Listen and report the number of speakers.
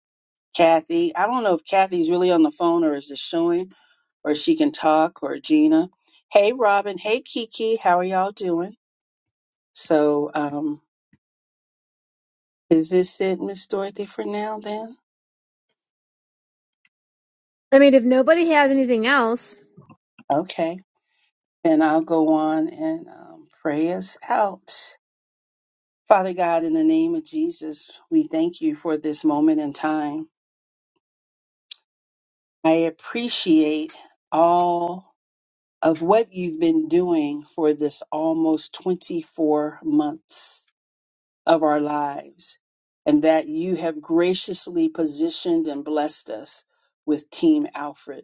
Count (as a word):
two